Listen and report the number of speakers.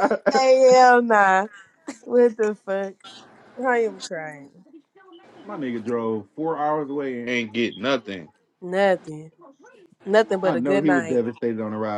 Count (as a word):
two